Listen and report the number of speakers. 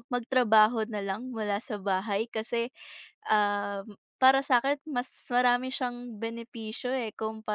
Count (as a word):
one